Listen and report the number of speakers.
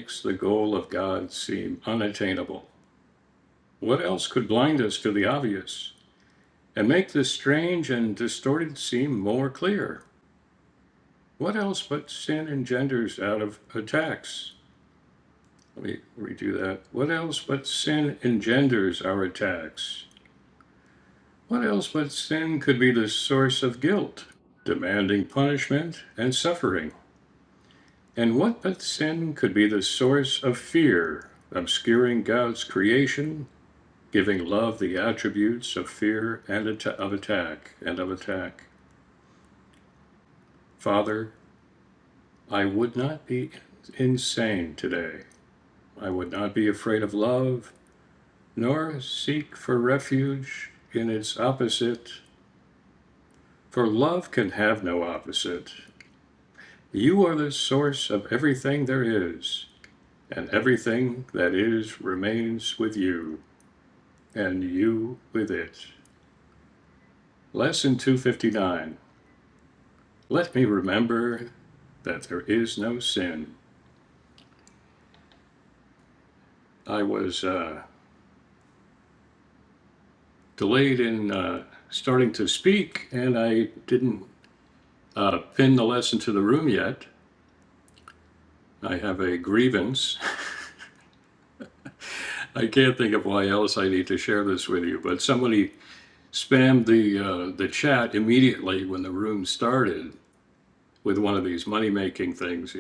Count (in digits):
1